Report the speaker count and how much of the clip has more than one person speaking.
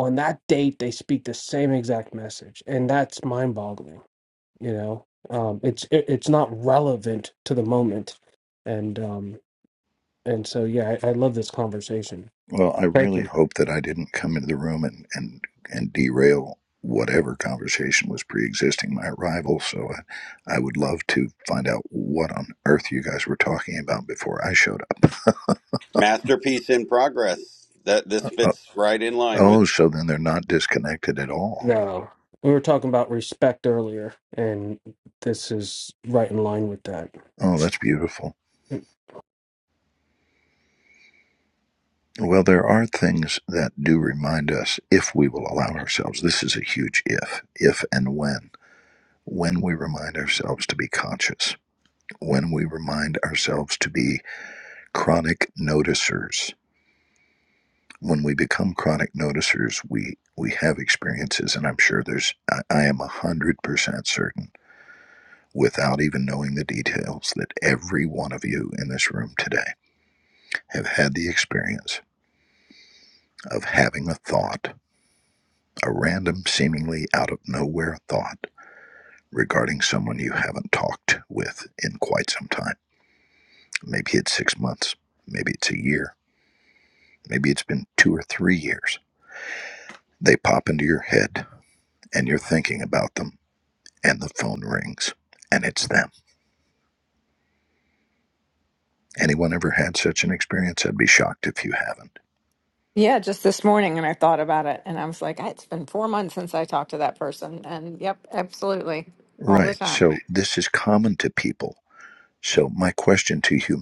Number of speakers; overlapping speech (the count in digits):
4, about 1%